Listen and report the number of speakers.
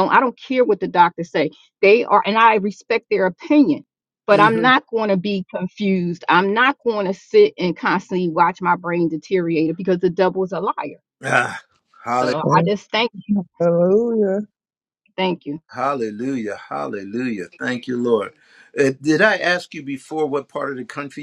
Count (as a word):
three